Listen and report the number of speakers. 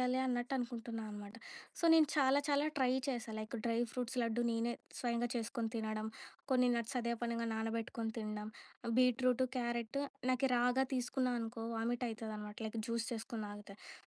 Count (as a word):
one